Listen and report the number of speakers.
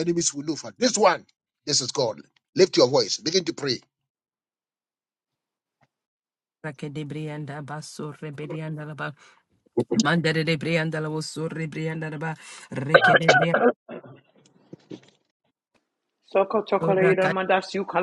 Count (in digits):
3